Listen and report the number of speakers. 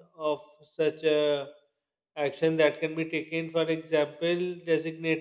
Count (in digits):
1